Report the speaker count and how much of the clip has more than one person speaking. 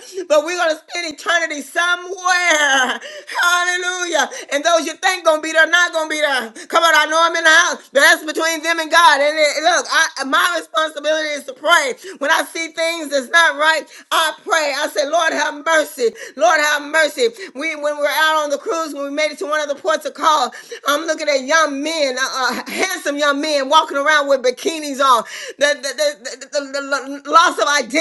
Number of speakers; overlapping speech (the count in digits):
1, no overlap